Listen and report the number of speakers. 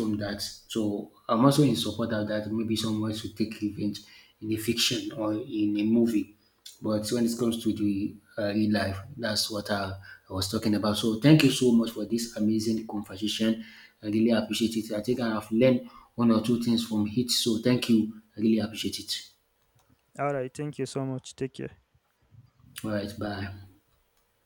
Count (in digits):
2